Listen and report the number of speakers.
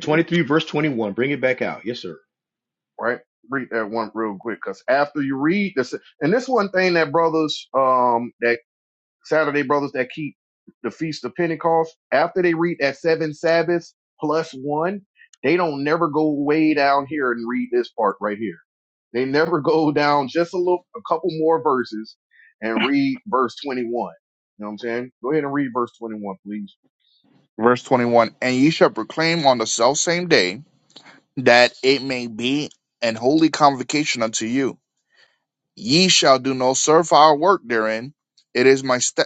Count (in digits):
3